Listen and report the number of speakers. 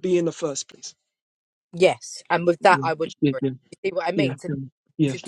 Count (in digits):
2